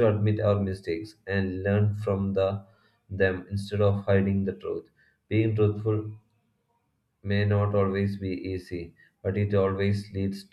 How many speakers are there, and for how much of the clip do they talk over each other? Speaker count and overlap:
one, no overlap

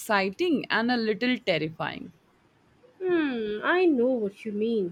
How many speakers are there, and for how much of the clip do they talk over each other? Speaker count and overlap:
two, no overlap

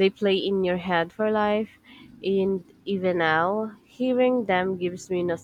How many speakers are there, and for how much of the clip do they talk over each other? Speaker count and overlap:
one, no overlap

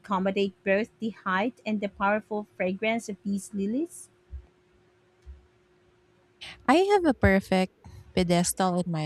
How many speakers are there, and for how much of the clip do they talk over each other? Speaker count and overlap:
two, no overlap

